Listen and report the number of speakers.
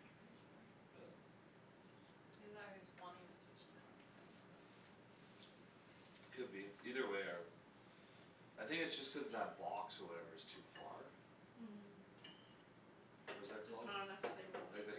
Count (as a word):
three